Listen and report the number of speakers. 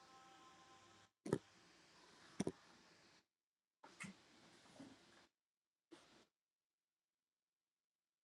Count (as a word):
zero